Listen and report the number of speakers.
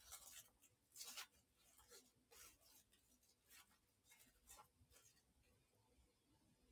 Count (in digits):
0